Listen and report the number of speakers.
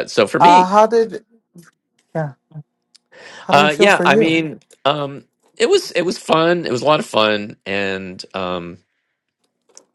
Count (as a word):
two